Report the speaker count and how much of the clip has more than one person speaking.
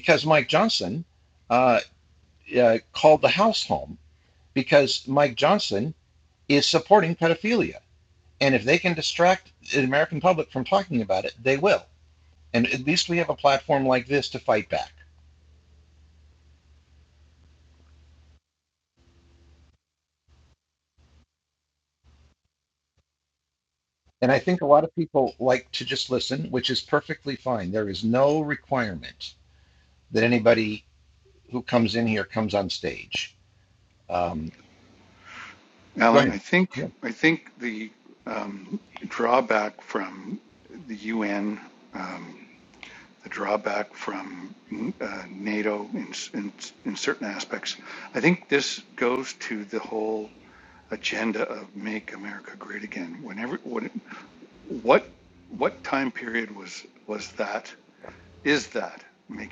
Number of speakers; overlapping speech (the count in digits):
2, about 1%